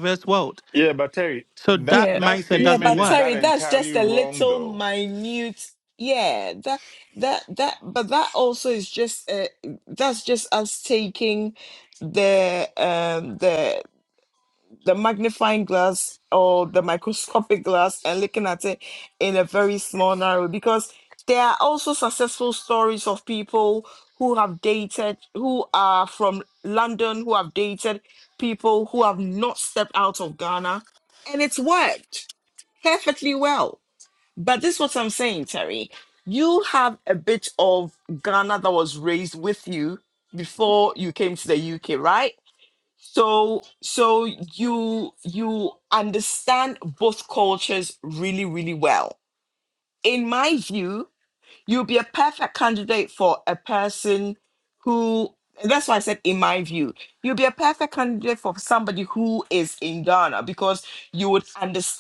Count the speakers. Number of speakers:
3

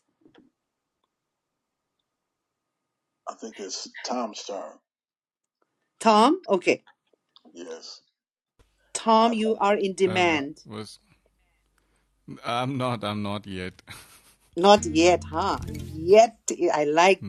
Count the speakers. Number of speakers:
3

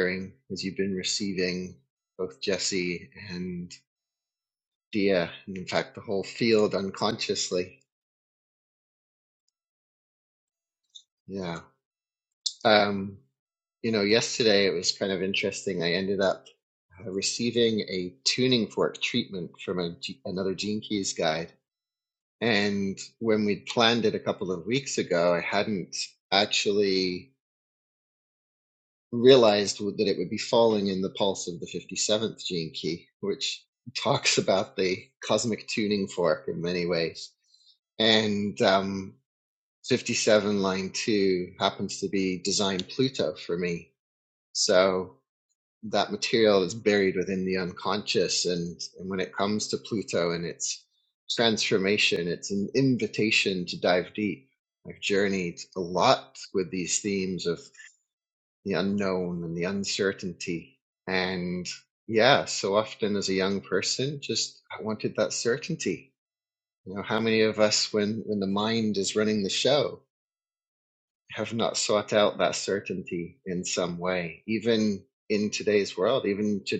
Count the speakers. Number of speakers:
1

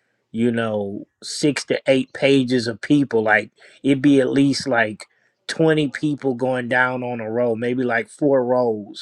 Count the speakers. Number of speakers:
1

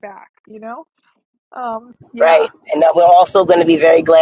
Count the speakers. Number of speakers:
2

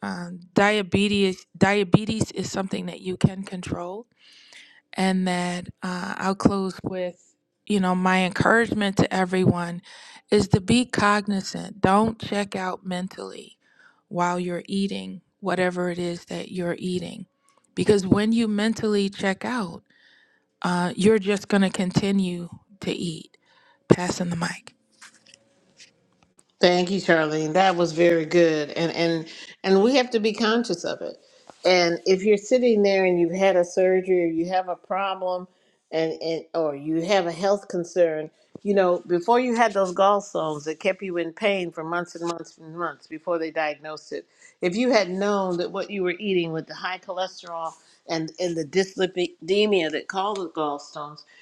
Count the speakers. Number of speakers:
2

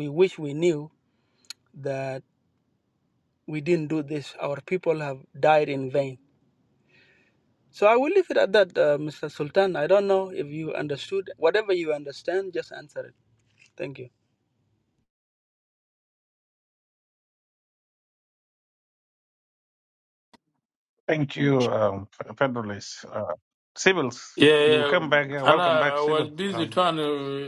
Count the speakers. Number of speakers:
3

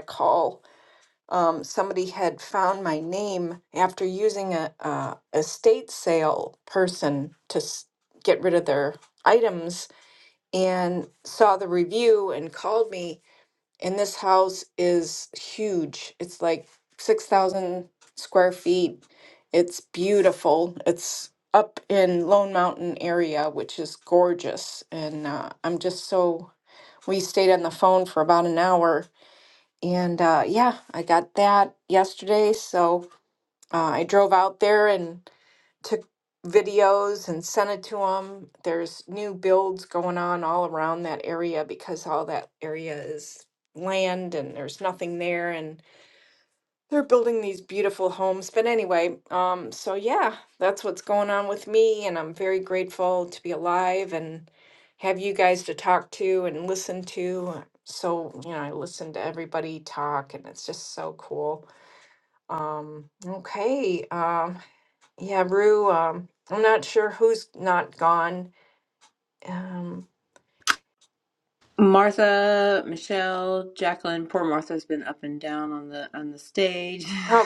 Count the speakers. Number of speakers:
2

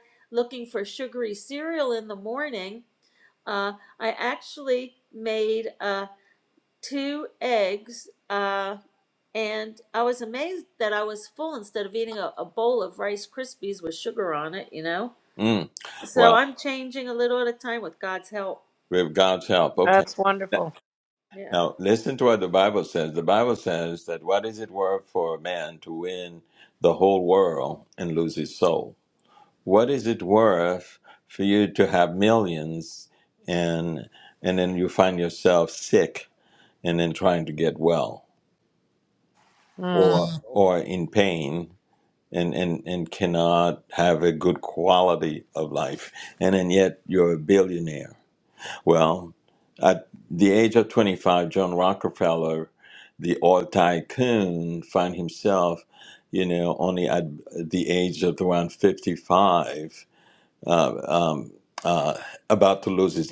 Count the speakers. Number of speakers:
3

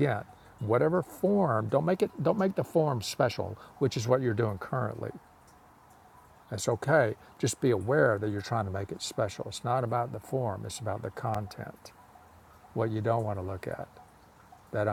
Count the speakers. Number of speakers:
1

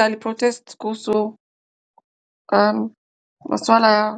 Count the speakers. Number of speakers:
1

